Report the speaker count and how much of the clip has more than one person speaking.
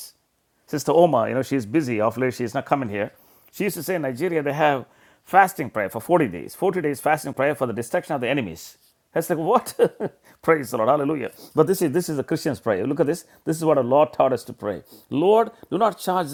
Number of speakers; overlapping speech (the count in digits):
1, no overlap